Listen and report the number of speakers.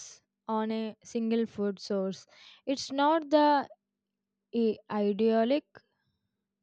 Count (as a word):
one